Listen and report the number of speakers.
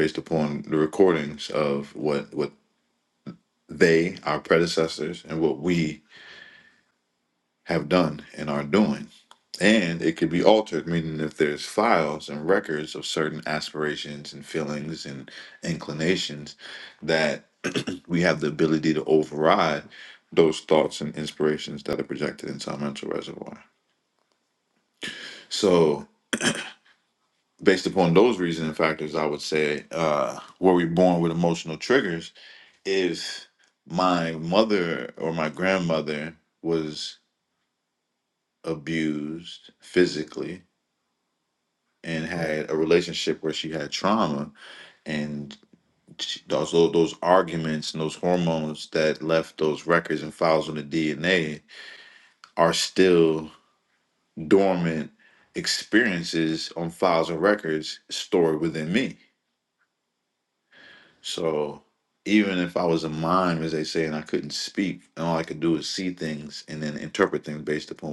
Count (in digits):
1